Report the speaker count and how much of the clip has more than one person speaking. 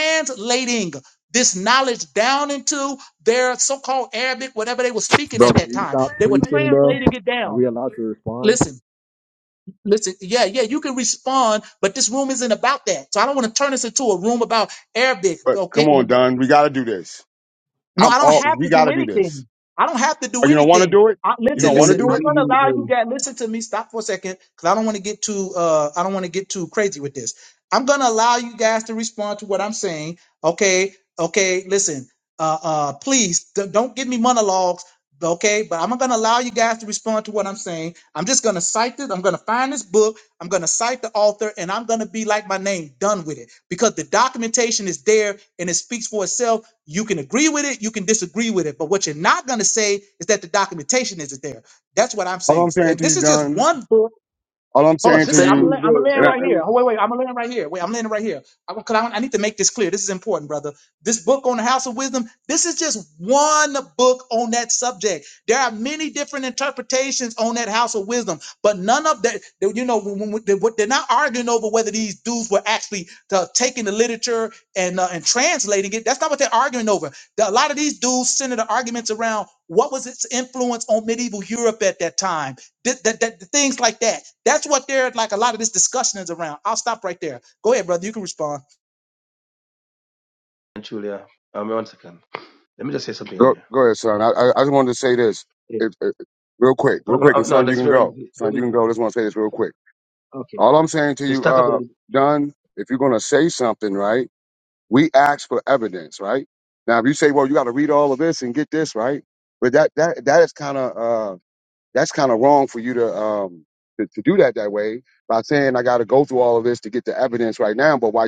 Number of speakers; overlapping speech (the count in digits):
4, about 9%